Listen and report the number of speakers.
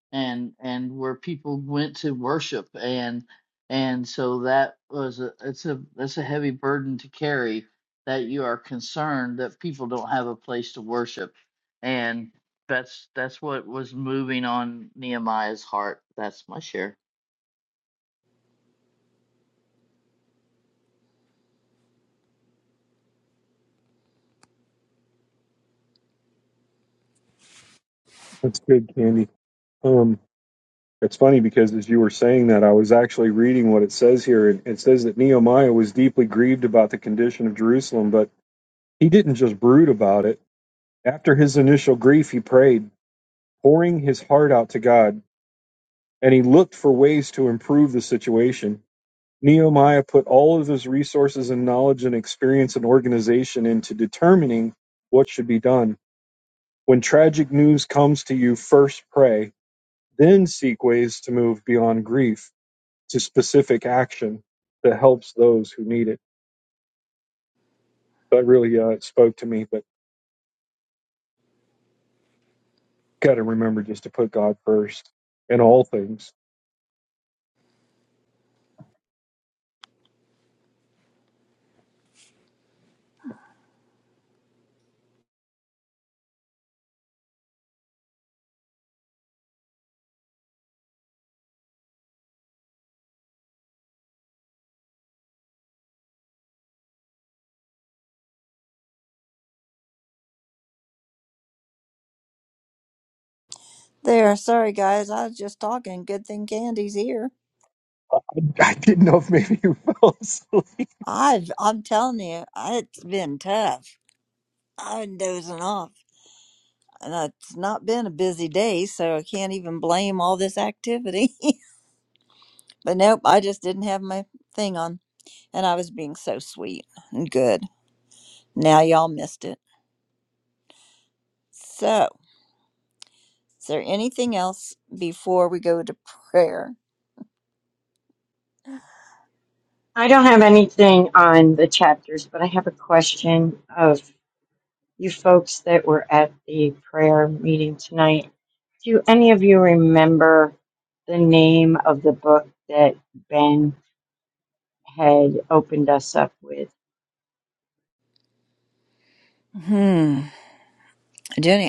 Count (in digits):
4